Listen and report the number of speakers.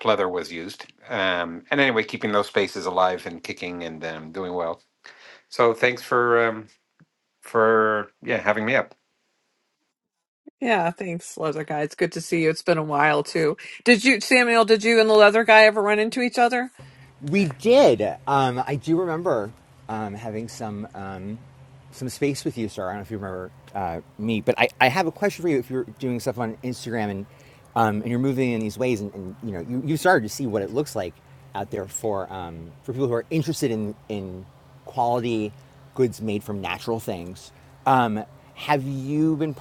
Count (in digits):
3